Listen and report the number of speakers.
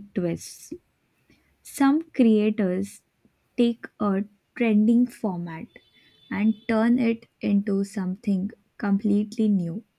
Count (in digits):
1